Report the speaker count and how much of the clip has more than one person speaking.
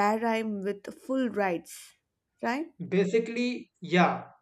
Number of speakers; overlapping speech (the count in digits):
2, no overlap